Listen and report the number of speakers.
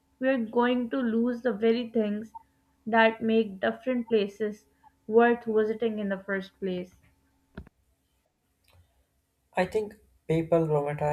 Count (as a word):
two